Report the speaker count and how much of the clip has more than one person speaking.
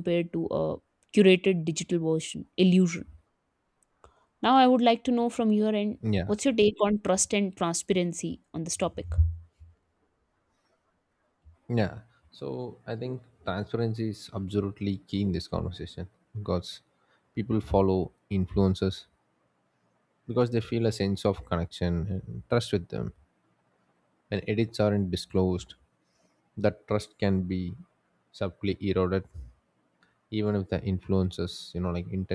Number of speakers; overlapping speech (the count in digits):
2, under 1%